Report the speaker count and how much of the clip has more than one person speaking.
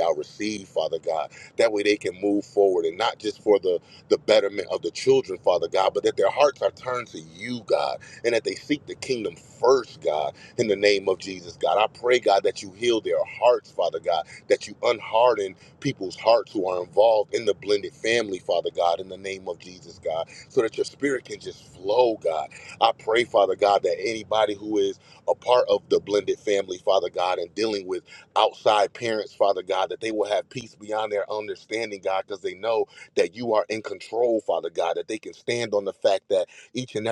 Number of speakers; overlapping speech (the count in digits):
1, no overlap